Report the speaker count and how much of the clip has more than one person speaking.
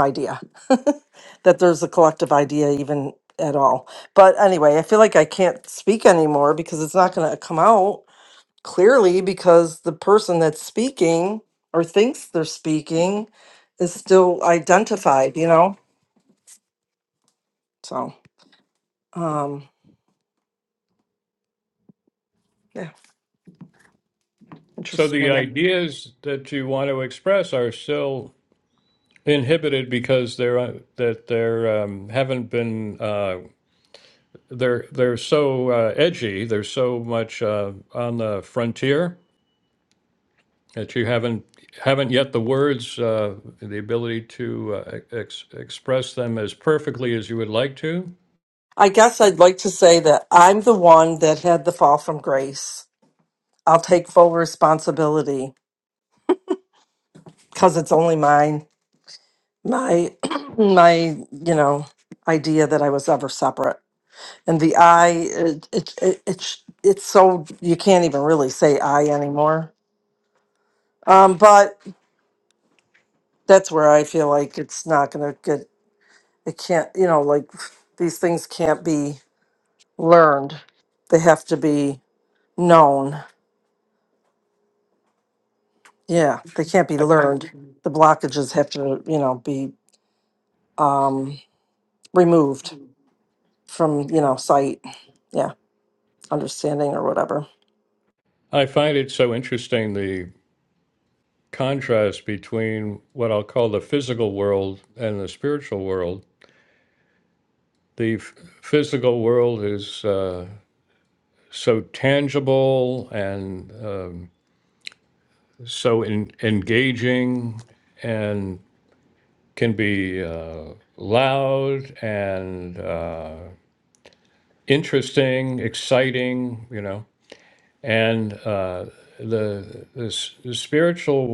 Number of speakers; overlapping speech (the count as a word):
two, under 1%